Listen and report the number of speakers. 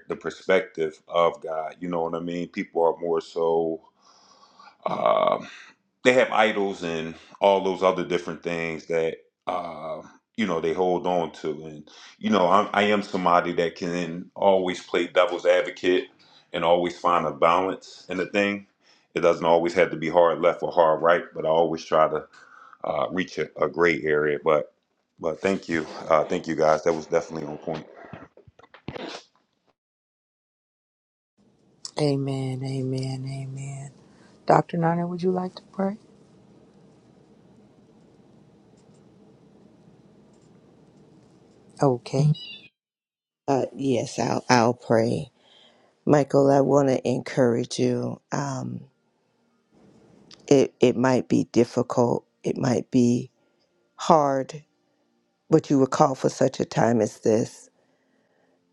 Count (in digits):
3